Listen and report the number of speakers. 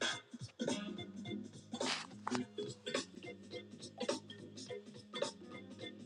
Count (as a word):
zero